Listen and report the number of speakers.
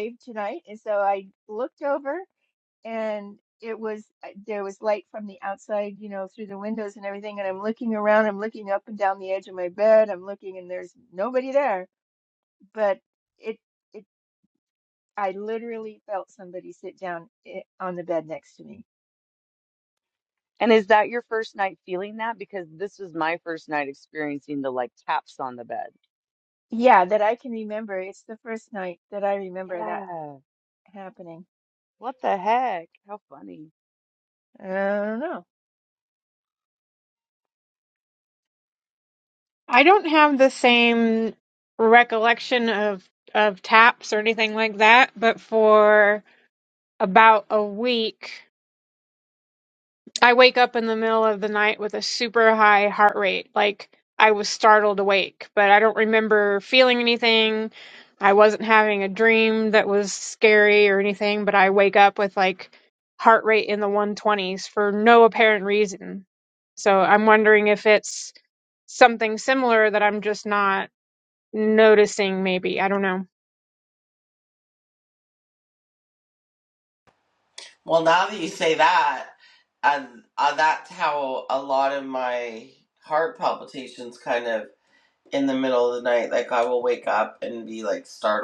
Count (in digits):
4